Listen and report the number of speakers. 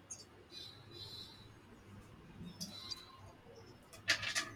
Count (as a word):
zero